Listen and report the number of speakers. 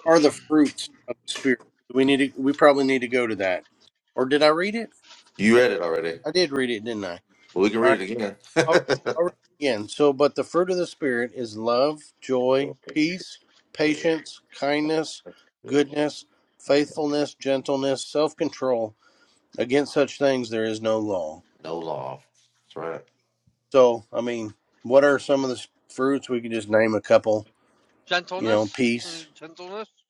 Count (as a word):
three